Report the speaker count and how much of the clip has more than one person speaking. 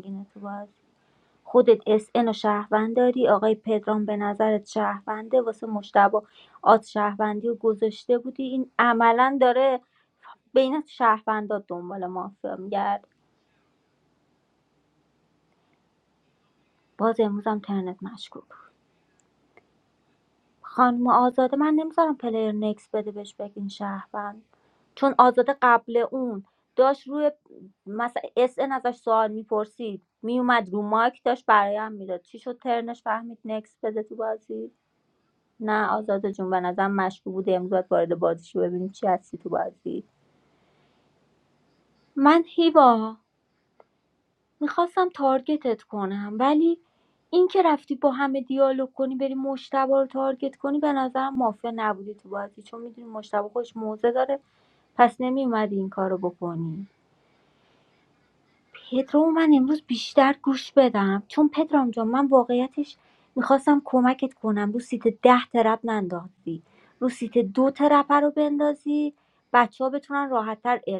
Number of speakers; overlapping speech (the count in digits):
1, no overlap